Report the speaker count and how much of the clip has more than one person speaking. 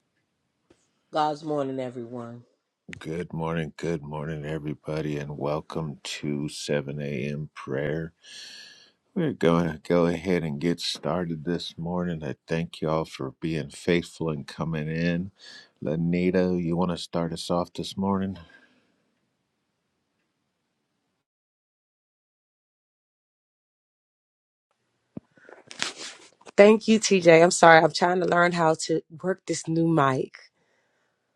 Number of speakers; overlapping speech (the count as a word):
three, no overlap